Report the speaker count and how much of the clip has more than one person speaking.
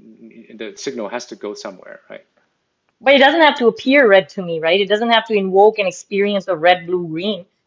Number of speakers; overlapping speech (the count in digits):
2, no overlap